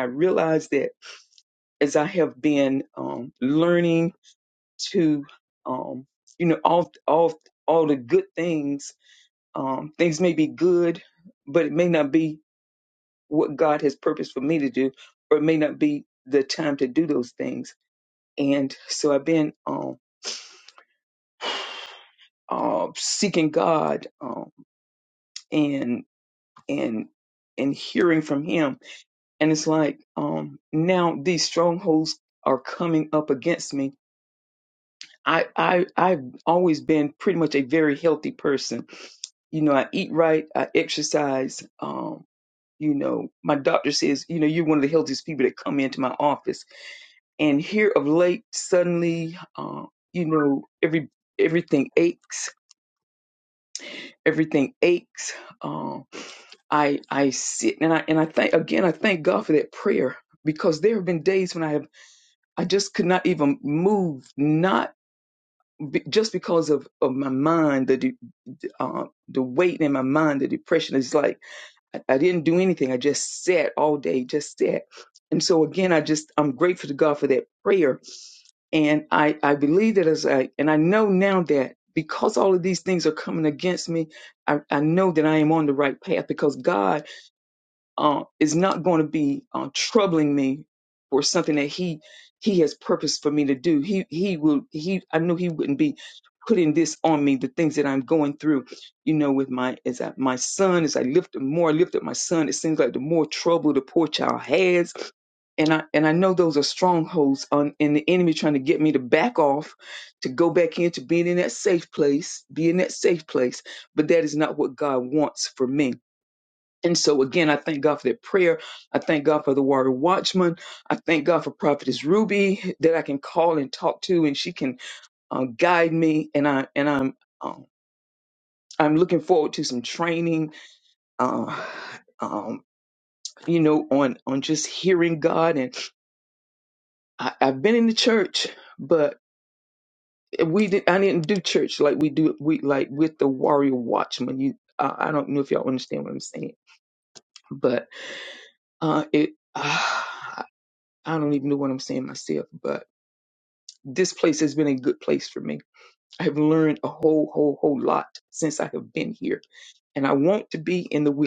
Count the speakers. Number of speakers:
1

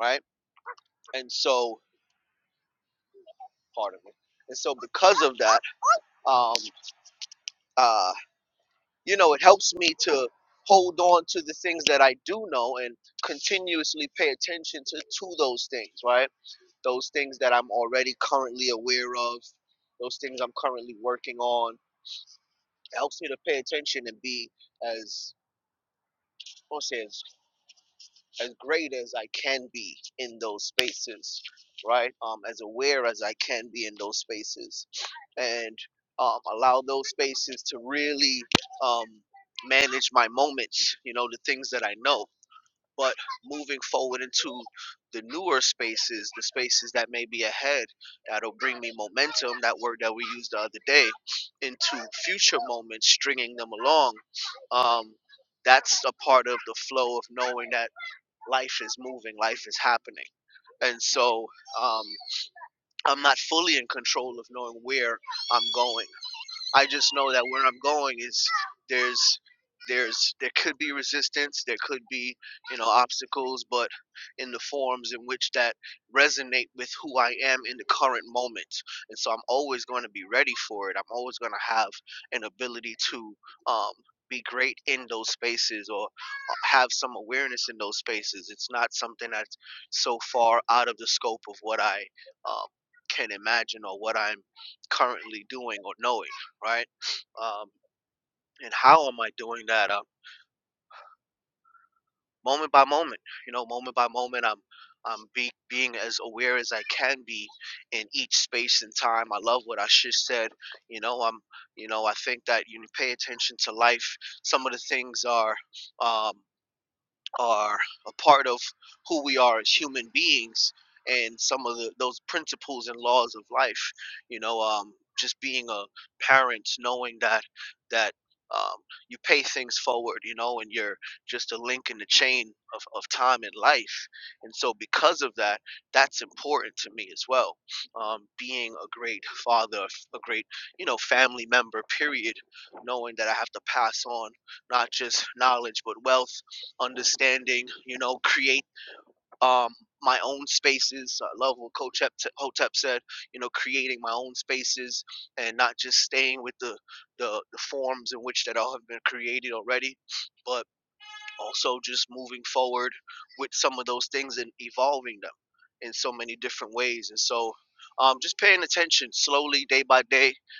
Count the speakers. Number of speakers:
1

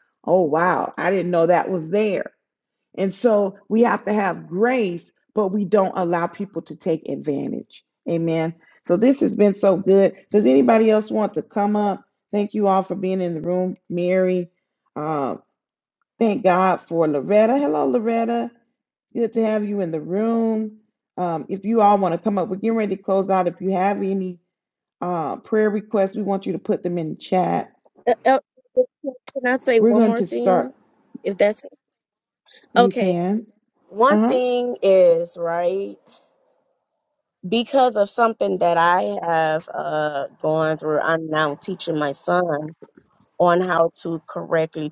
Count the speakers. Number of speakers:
2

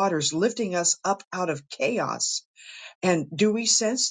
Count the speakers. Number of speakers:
1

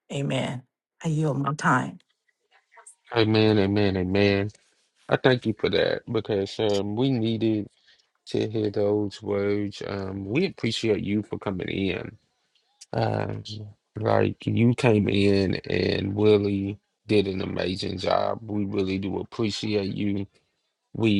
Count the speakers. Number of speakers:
2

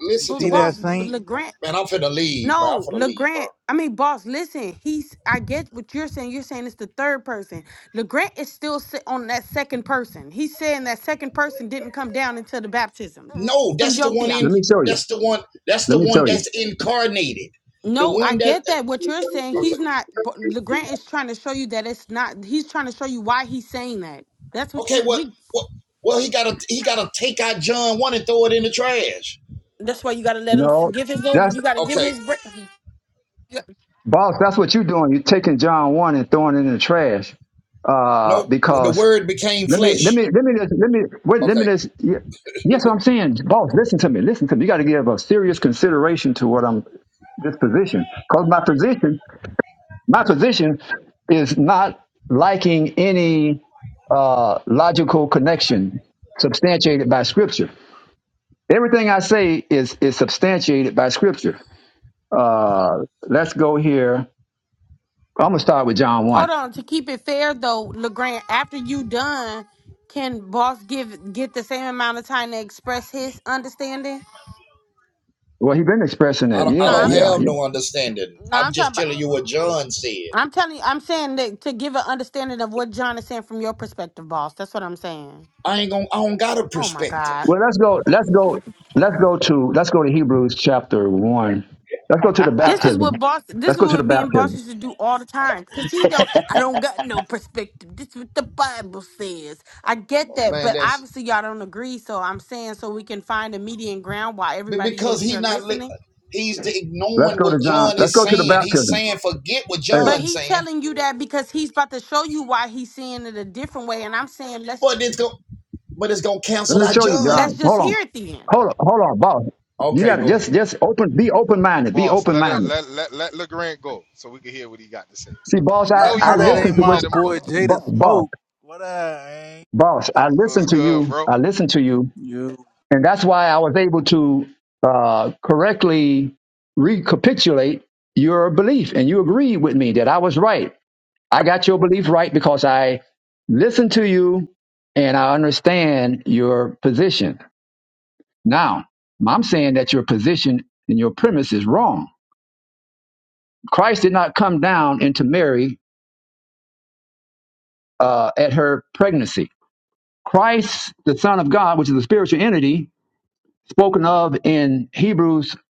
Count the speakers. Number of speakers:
5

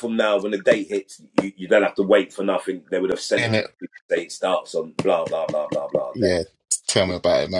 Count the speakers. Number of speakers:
2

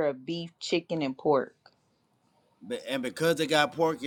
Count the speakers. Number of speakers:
2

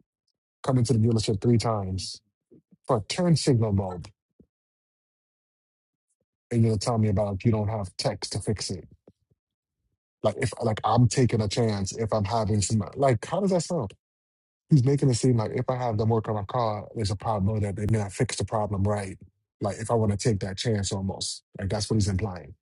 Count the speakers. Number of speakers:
1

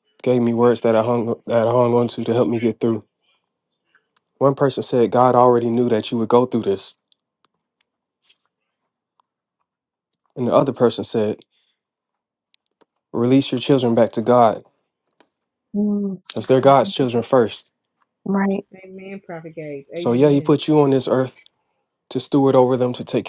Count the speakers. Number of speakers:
3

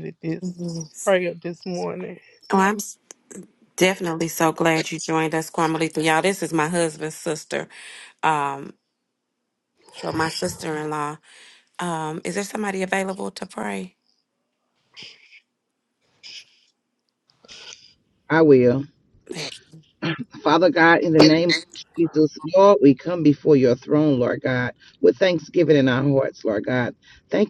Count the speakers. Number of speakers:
3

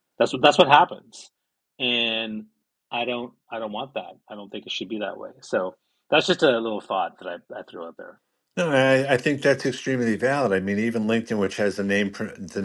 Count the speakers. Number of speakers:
2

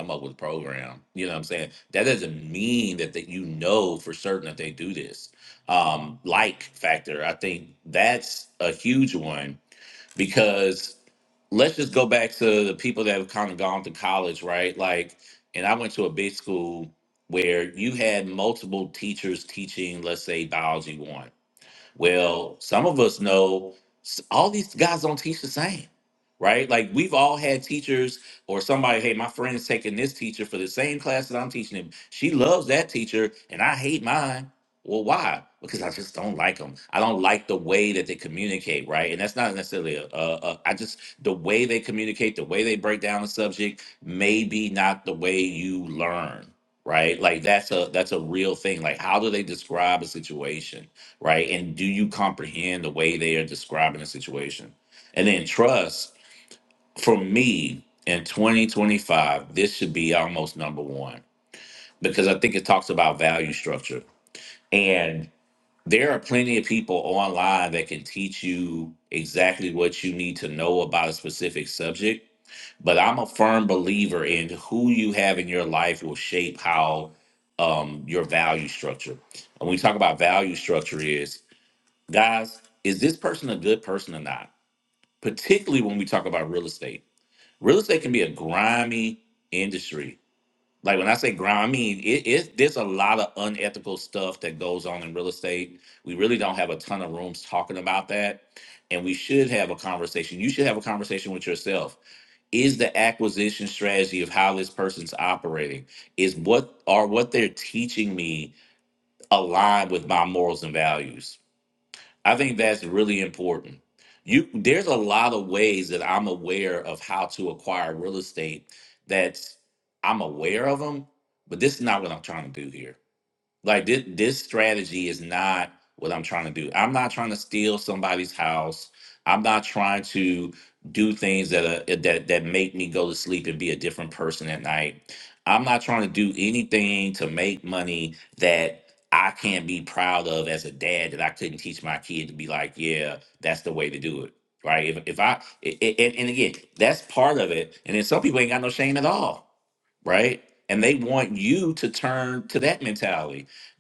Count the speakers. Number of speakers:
1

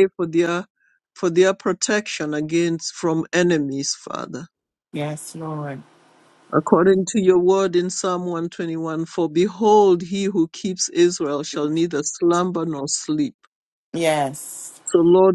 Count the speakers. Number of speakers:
2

